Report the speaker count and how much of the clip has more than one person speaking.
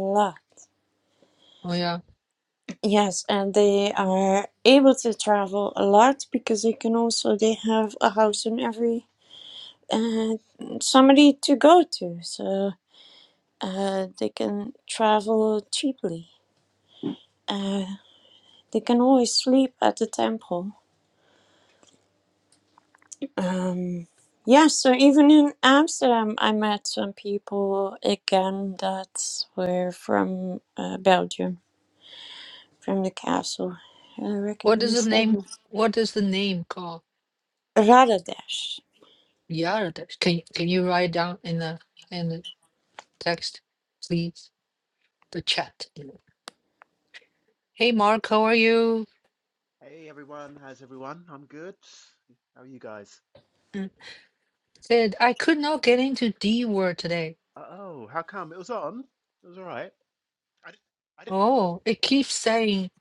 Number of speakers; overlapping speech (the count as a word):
three, about 1%